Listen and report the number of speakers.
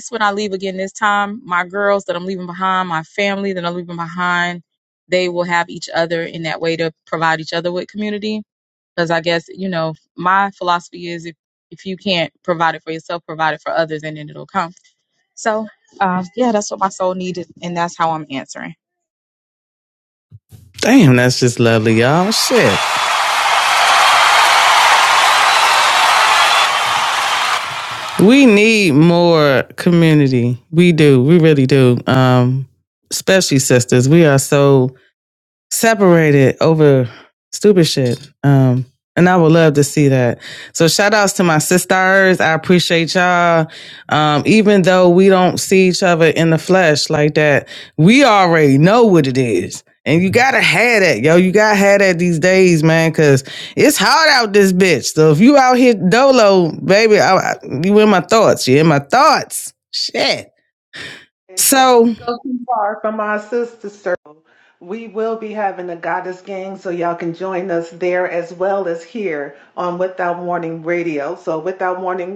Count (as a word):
three